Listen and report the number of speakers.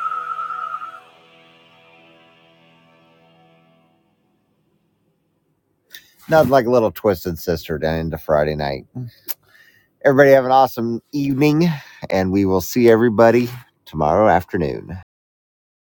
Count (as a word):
one